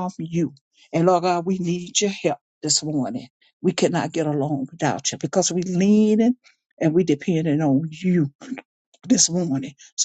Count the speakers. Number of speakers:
1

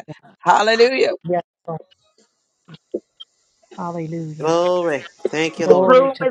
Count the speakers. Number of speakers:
3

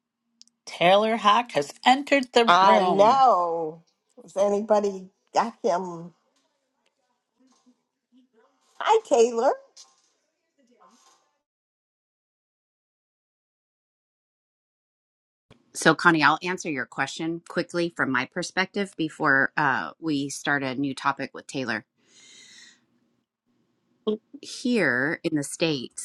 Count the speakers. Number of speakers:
3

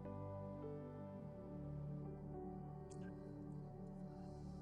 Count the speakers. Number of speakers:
0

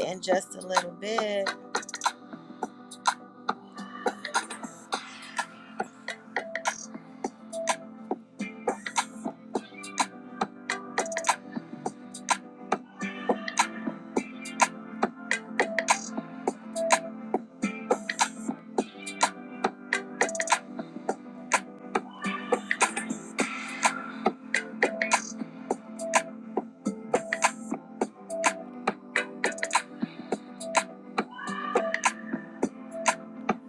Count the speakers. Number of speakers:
1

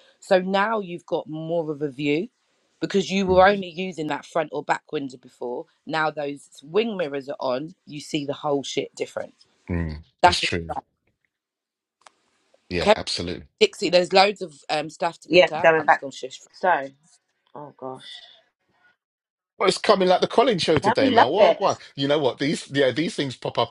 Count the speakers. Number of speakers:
3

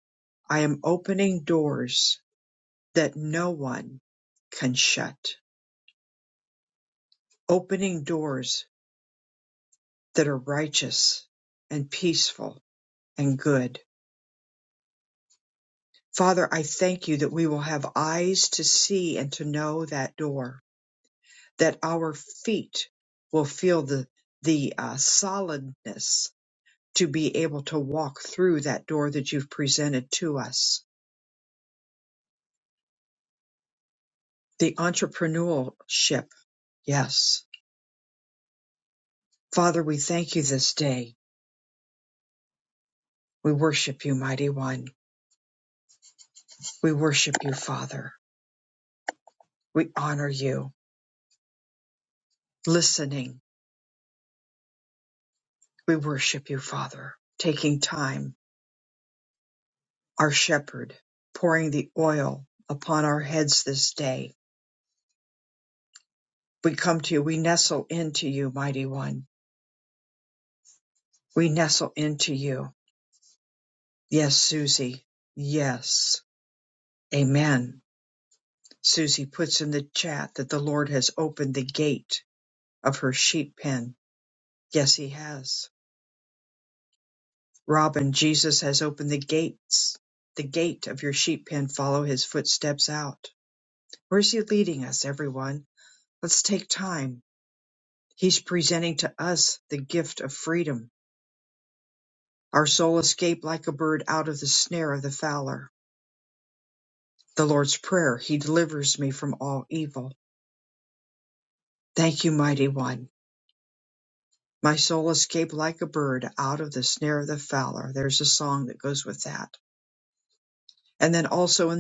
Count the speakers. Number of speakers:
1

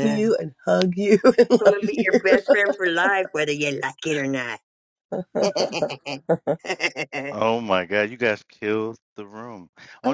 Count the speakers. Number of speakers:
3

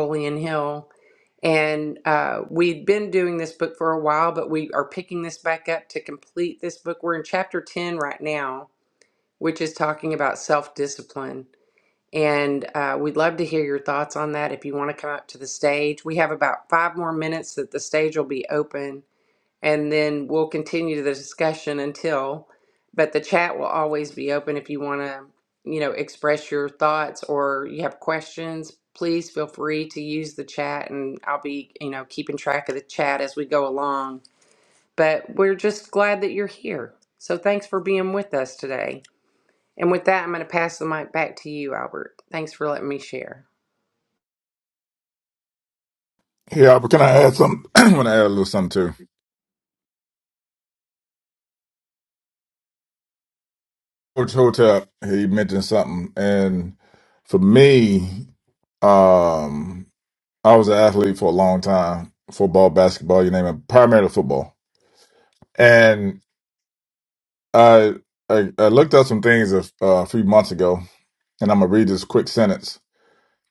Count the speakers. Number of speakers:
2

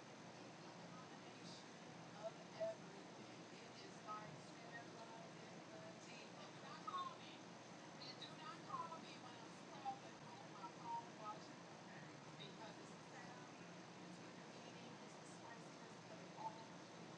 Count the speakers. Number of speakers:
0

